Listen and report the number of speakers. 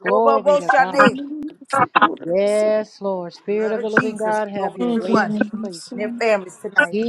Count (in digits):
3